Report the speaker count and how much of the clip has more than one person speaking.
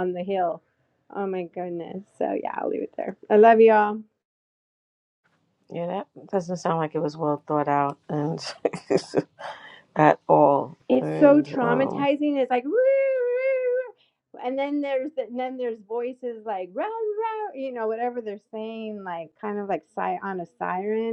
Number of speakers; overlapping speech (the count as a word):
two, about 5%